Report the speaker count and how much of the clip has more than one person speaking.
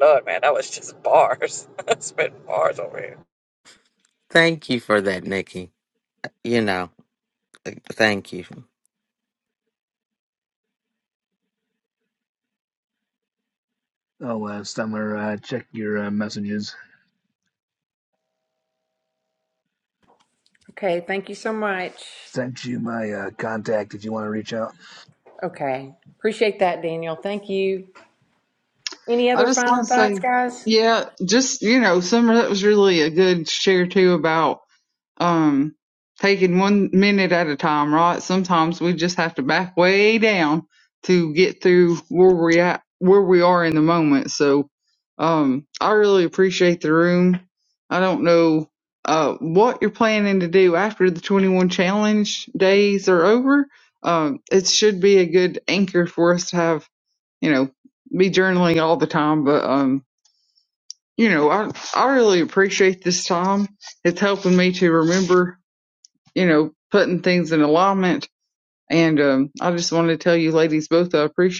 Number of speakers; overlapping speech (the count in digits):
5, about 1%